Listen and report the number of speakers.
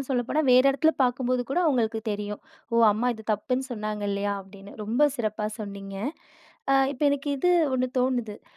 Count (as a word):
one